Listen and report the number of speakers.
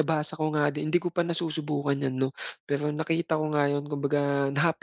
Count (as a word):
one